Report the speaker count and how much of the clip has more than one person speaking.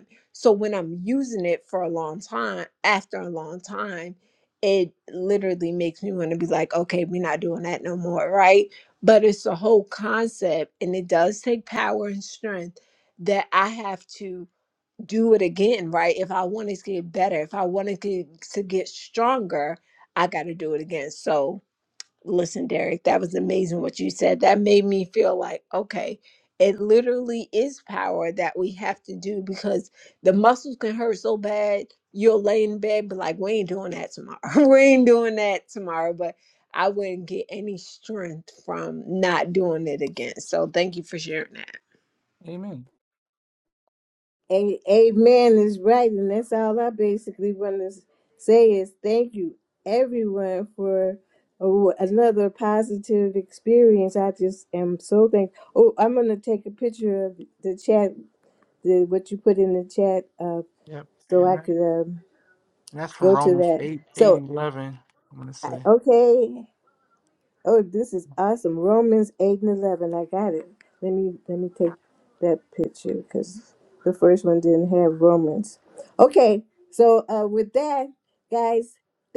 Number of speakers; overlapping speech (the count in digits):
3, about 2%